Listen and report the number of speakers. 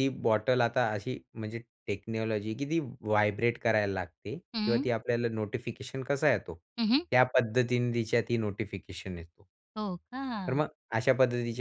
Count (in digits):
2